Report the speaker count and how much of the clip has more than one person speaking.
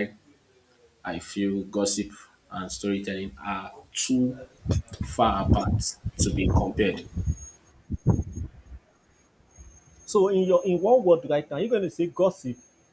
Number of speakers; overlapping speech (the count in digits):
2, no overlap